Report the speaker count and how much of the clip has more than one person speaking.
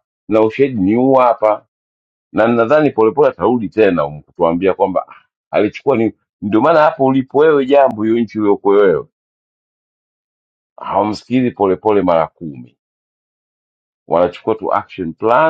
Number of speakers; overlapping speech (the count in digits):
1, no overlap